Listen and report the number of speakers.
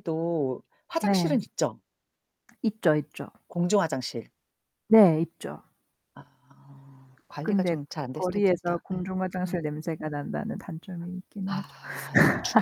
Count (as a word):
two